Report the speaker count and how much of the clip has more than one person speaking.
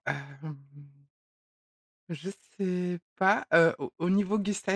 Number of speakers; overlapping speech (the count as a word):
one, no overlap